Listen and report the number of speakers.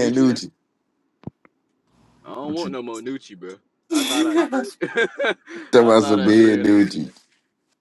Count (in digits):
2